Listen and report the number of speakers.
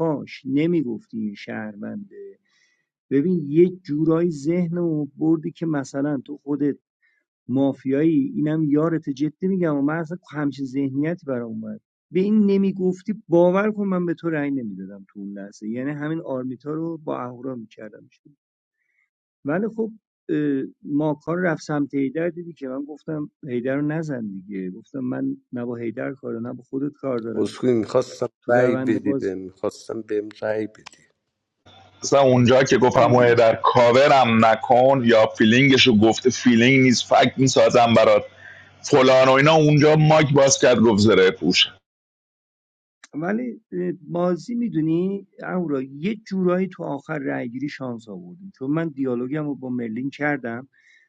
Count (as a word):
three